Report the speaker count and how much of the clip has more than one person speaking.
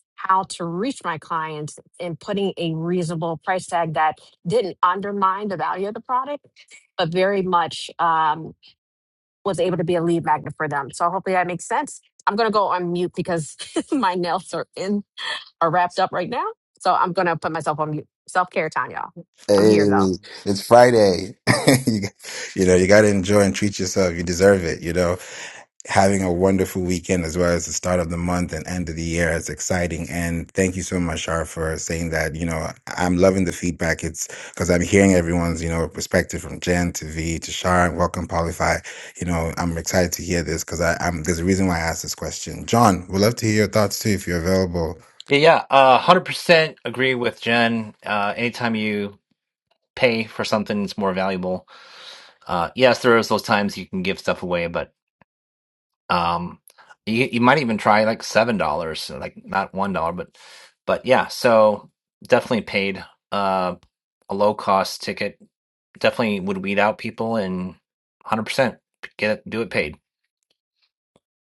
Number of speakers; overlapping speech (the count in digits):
3, under 1%